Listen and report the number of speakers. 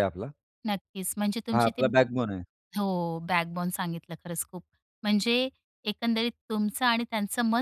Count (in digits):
2